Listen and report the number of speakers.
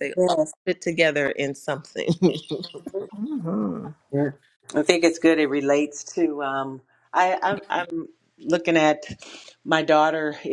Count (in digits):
3